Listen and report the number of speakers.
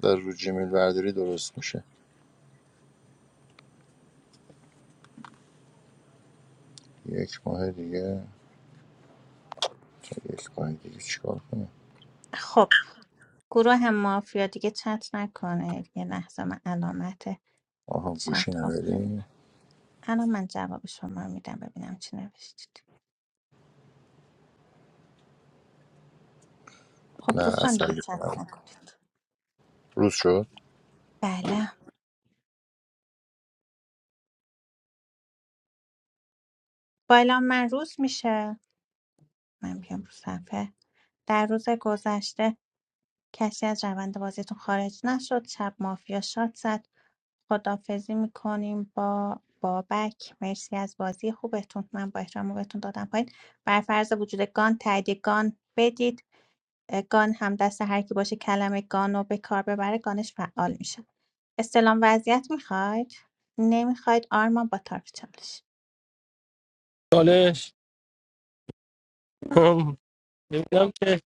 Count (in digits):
3